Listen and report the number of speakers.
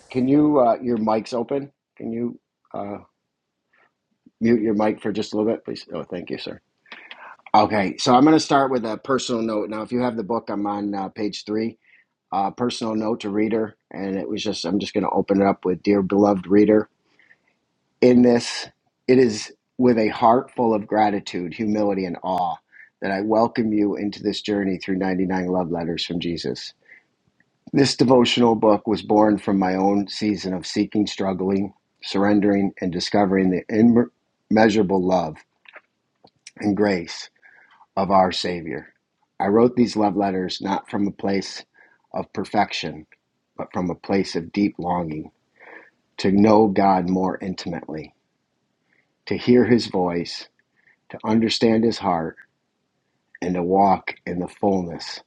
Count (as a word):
one